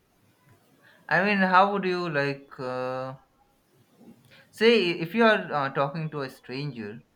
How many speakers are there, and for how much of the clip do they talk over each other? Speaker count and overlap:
one, no overlap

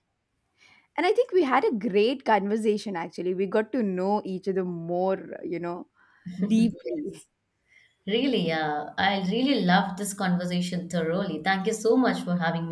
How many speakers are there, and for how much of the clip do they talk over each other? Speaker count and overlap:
two, no overlap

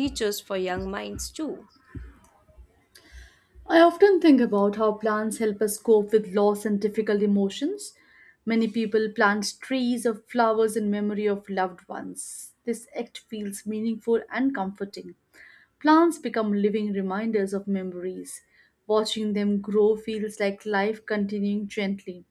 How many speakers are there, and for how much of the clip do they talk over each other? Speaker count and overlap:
two, no overlap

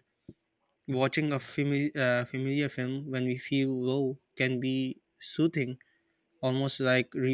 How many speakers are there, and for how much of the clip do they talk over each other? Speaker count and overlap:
one, no overlap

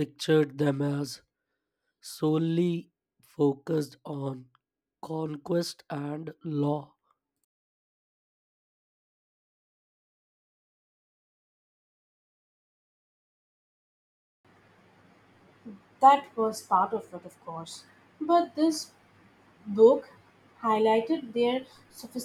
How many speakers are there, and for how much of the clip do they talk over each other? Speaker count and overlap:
two, no overlap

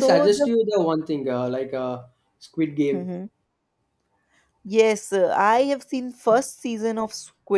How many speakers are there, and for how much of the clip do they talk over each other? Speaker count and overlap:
two, about 8%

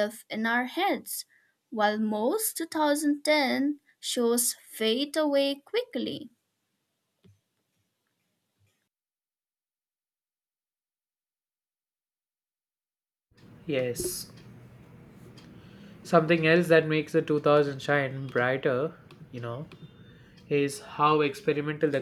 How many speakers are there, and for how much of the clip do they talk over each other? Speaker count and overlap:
two, no overlap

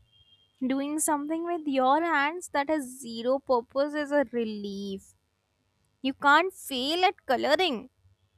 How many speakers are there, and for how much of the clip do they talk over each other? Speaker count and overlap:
one, no overlap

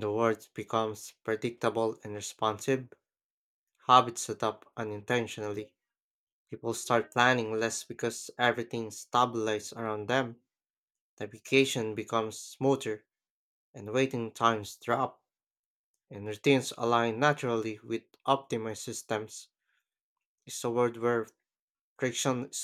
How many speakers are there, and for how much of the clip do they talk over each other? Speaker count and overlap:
one, no overlap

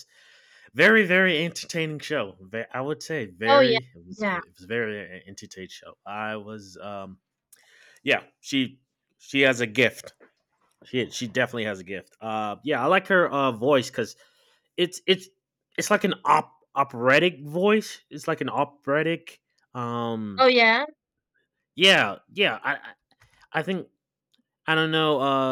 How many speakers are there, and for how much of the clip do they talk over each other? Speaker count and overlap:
two, about 1%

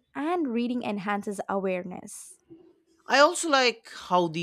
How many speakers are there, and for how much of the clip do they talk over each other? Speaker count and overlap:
two, no overlap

